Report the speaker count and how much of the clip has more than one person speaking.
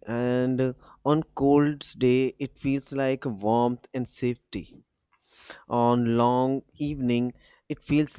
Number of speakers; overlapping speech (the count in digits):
1, no overlap